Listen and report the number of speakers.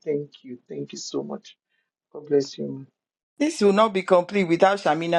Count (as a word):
two